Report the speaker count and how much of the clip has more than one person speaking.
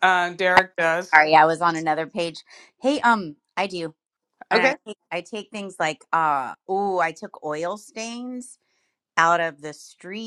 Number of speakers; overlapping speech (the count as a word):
two, about 3%